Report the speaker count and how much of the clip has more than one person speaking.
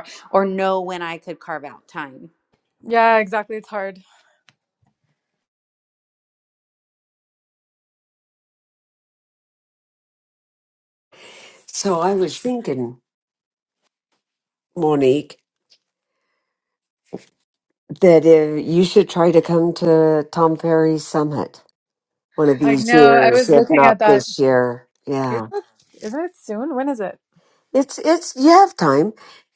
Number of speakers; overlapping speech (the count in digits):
3, about 5%